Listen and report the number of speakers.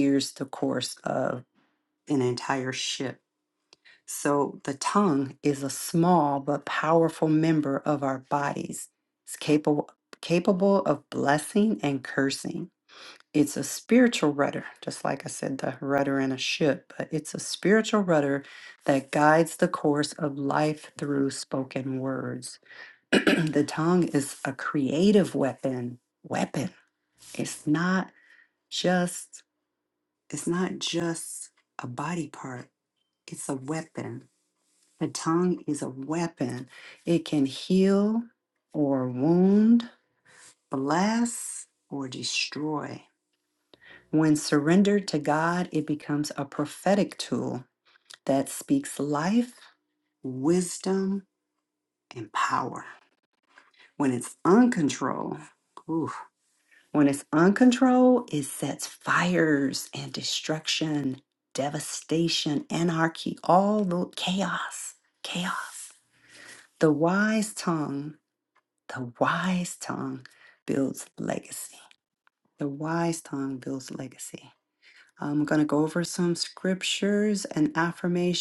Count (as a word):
one